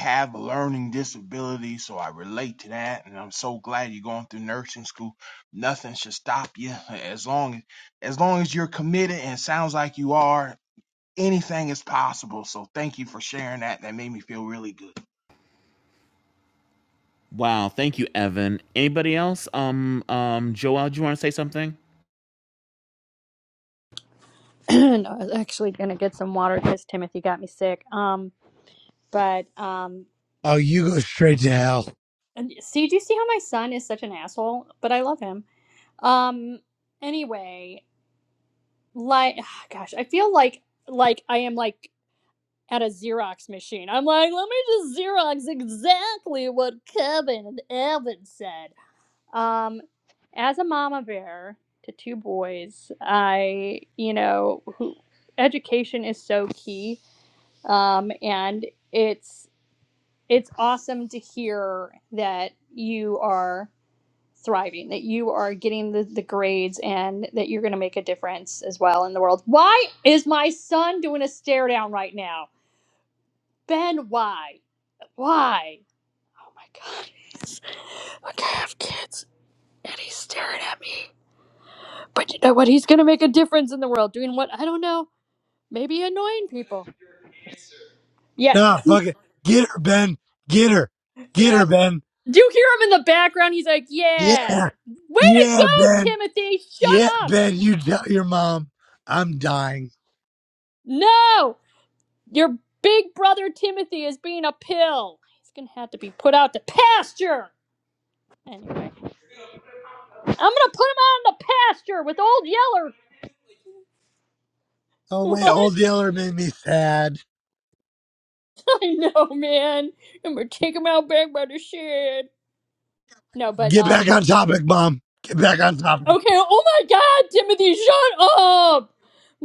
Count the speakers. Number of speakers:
4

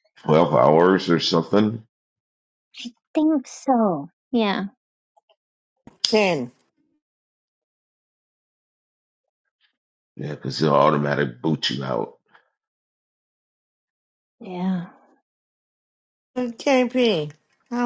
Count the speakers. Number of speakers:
3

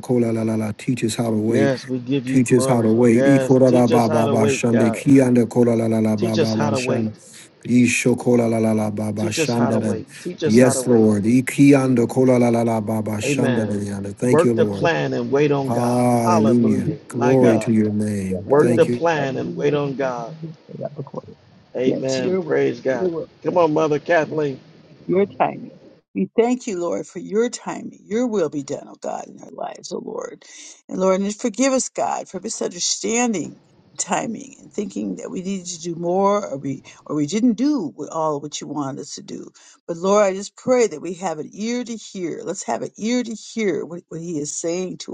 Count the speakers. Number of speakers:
3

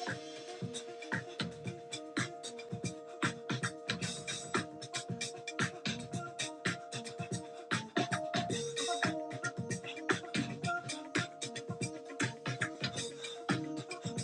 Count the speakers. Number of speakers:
0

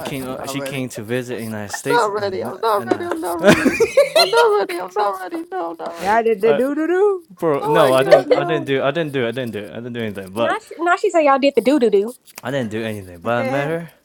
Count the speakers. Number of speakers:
4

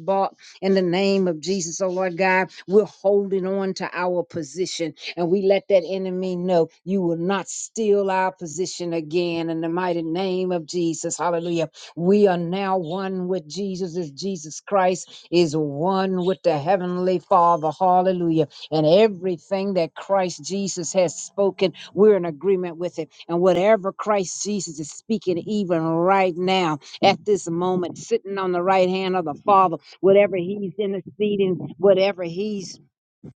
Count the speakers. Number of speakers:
1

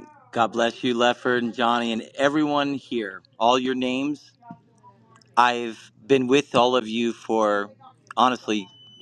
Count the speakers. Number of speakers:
1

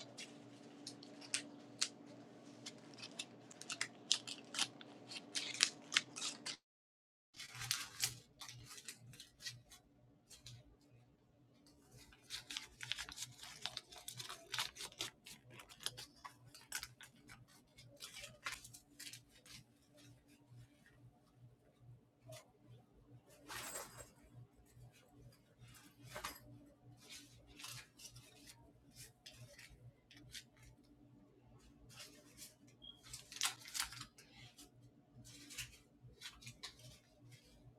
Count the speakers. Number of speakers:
0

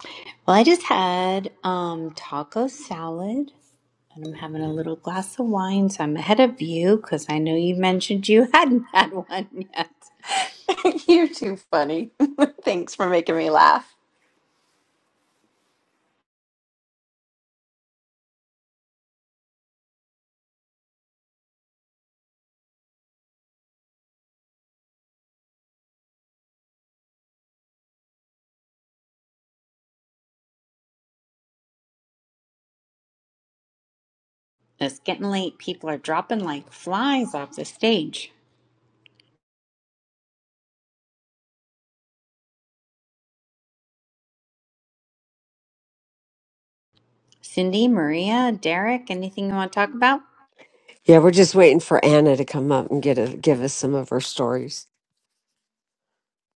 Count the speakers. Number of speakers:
3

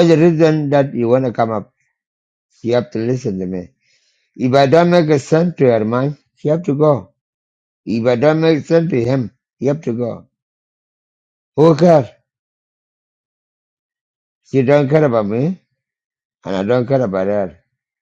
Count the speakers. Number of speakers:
1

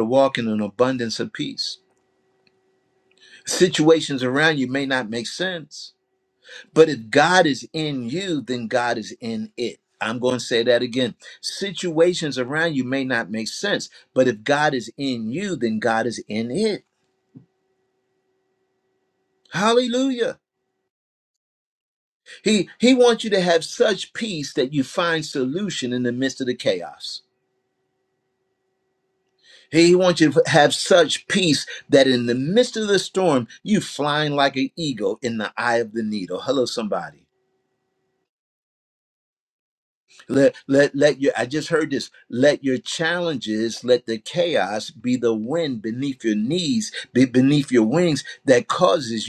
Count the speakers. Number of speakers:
1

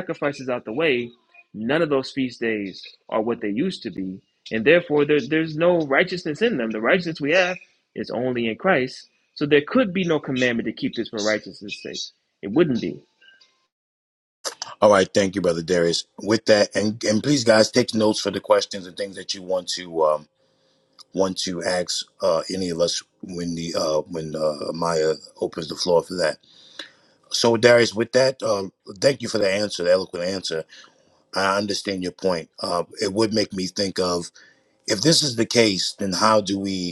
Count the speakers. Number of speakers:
2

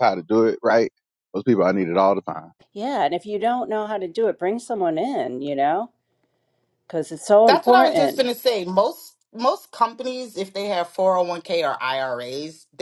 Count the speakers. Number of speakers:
3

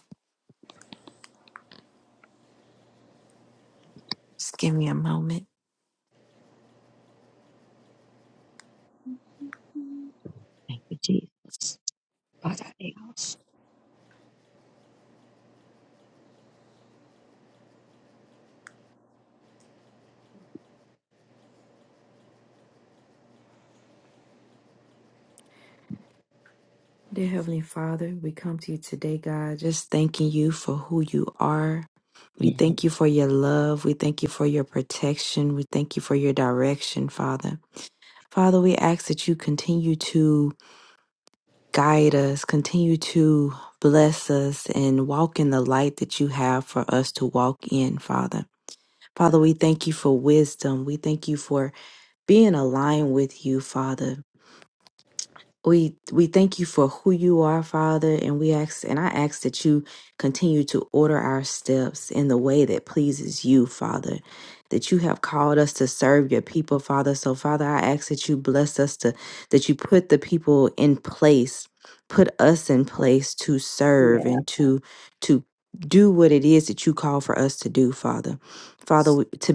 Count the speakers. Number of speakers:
2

